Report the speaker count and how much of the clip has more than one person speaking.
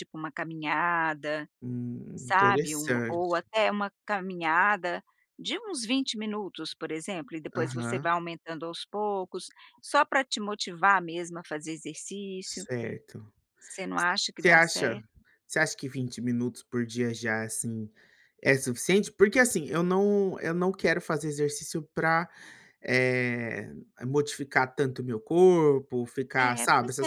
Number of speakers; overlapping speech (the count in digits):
2, about 10%